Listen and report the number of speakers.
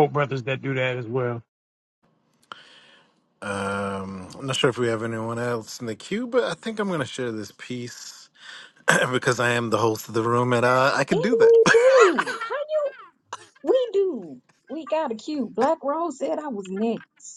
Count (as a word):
three